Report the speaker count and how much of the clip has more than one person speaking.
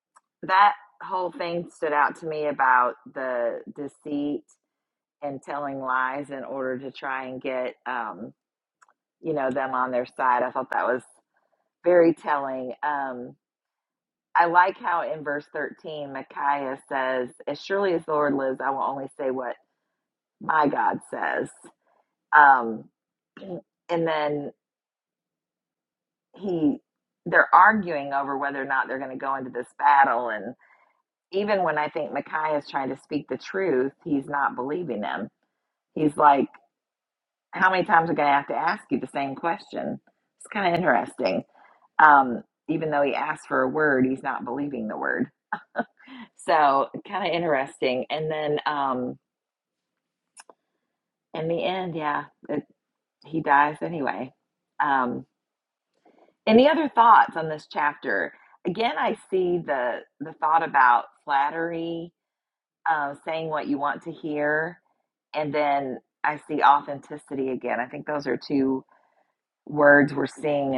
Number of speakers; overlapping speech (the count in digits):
1, no overlap